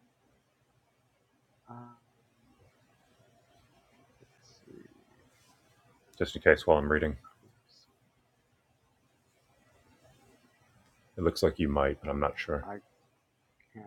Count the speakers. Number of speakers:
two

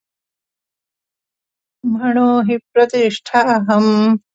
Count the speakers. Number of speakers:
one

